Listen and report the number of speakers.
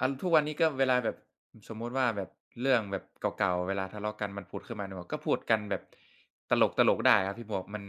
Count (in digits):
1